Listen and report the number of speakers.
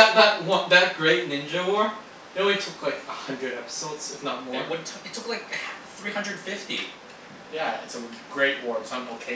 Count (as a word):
three